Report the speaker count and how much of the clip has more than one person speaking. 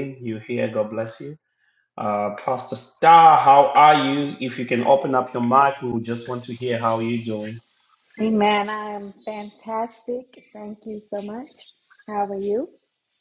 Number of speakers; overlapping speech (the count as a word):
two, no overlap